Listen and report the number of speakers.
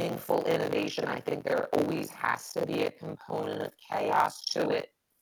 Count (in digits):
1